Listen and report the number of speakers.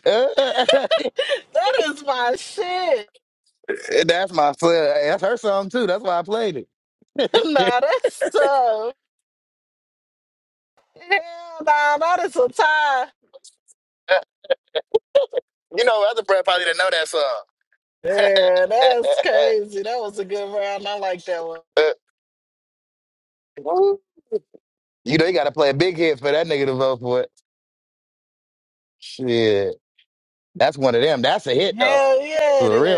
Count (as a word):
two